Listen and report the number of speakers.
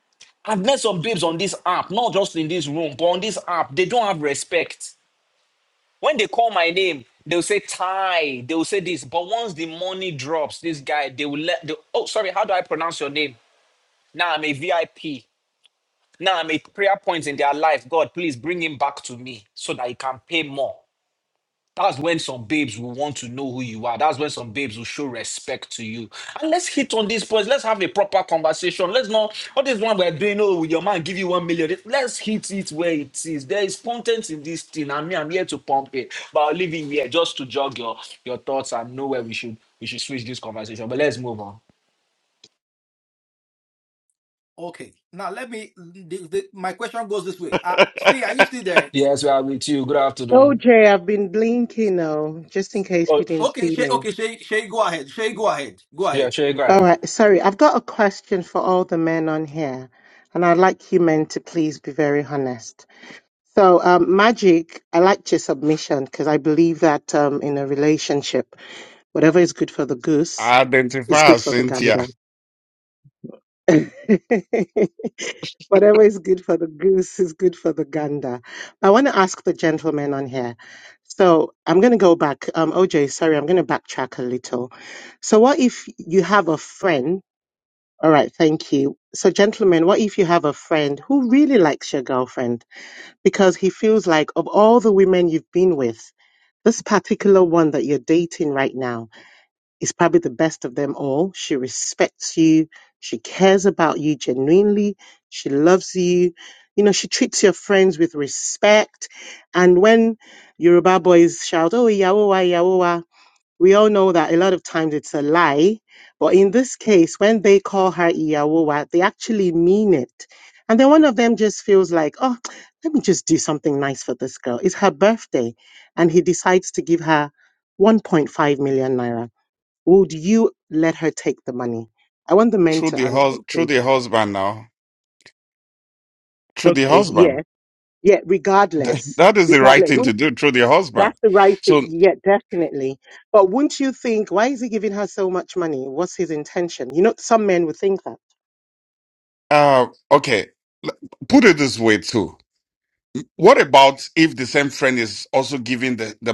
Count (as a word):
four